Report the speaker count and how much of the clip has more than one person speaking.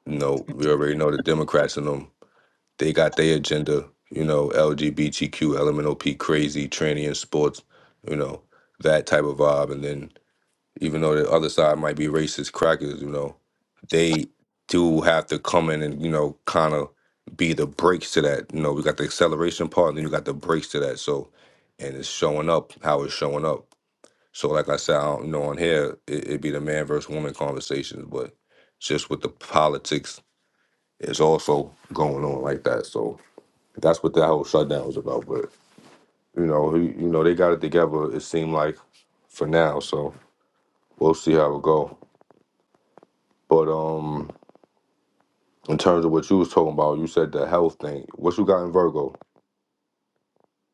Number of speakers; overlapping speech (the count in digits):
1, no overlap